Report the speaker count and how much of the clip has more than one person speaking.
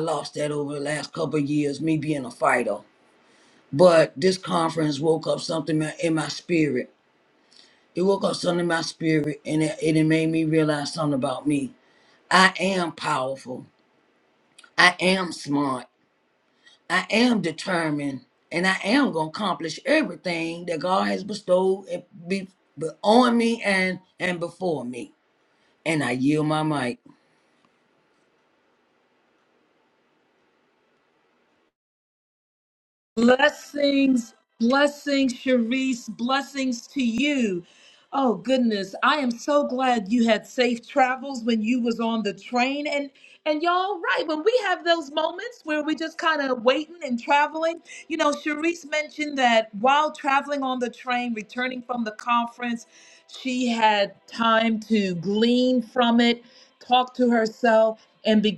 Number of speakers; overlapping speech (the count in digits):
2, no overlap